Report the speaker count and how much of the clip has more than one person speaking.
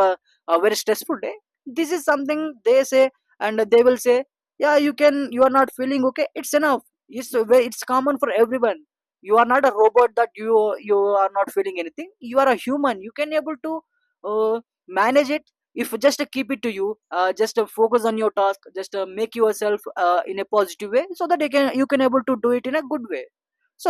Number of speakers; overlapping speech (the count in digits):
1, no overlap